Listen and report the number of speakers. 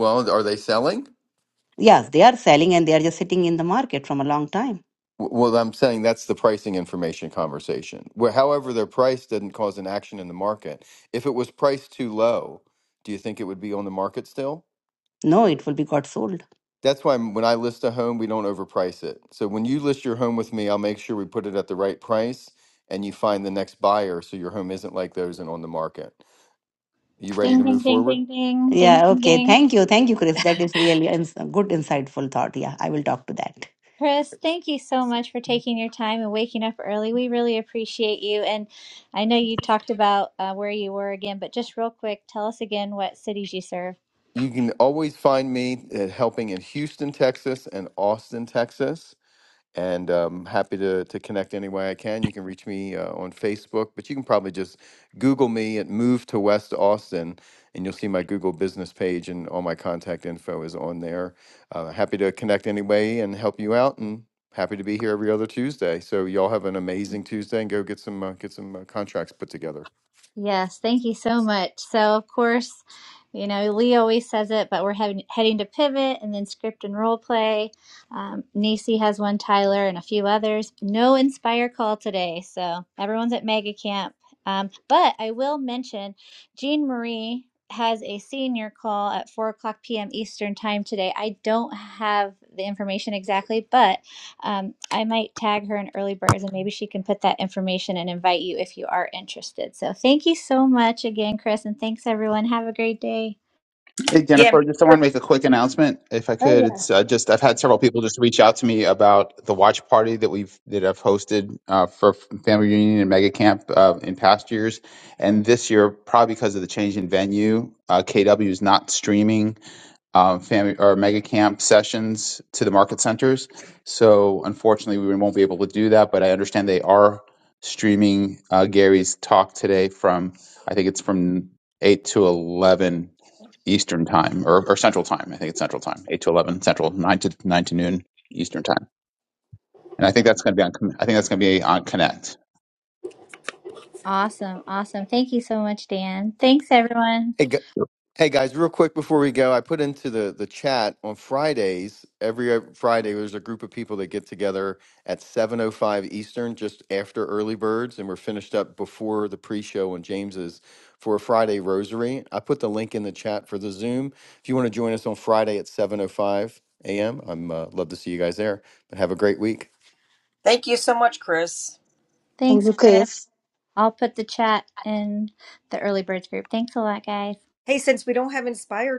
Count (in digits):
5